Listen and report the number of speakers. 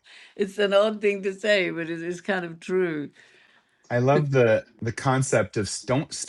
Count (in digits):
2